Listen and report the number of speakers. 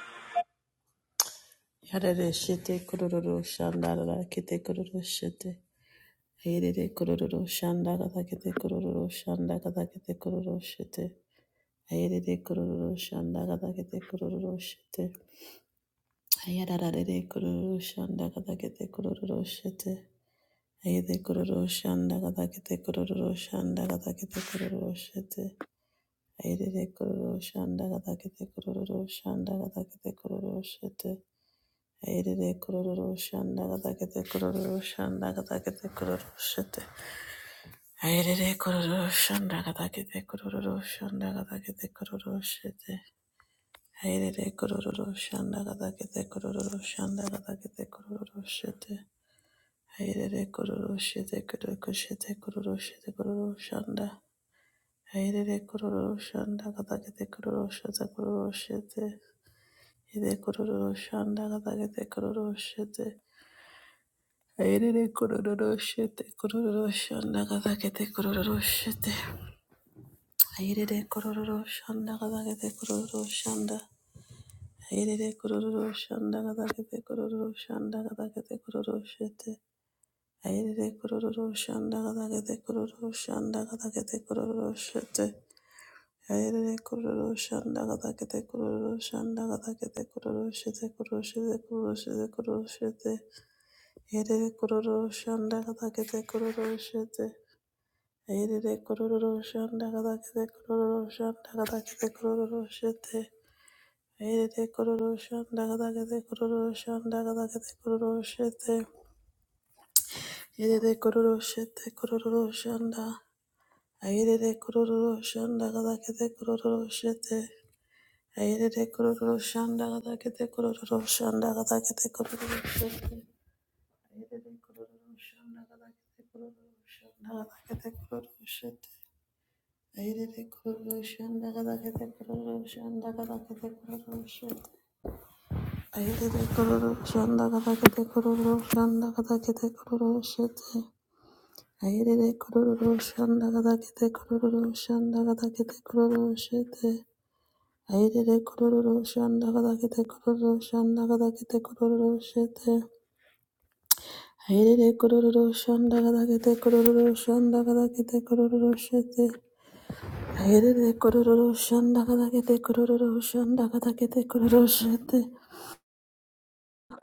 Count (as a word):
one